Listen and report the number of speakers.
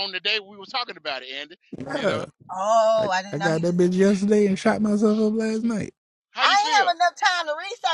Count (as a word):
three